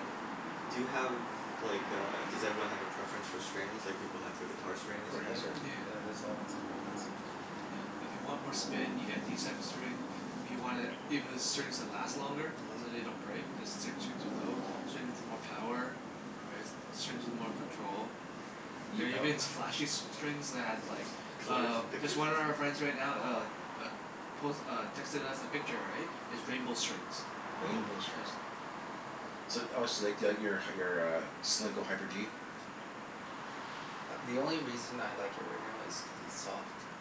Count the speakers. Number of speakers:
four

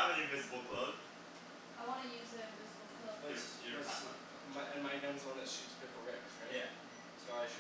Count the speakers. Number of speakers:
three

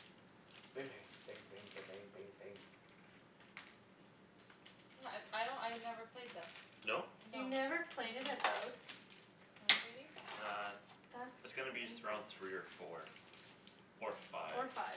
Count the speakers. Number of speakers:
four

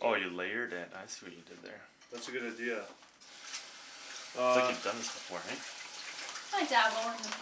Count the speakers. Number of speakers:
three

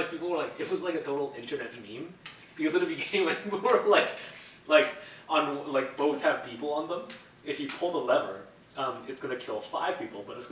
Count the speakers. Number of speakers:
one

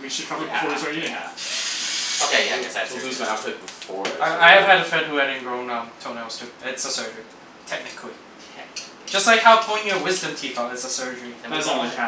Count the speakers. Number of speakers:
four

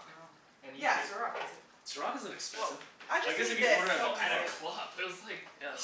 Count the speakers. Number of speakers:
three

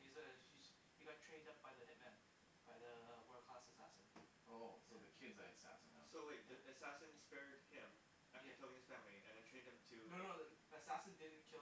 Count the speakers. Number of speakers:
three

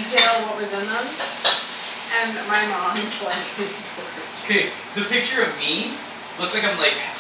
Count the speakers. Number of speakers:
two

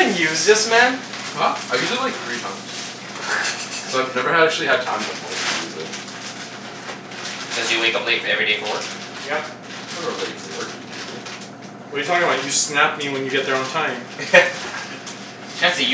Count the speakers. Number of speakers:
four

